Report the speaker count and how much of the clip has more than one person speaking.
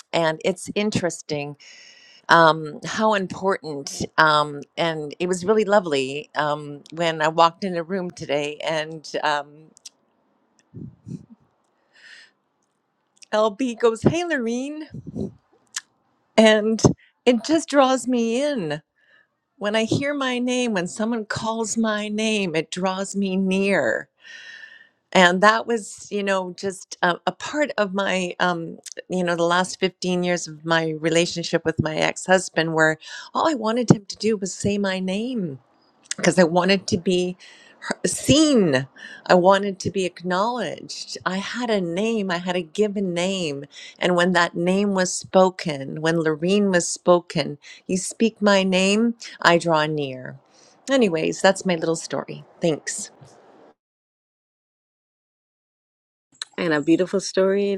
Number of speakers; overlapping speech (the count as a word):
two, no overlap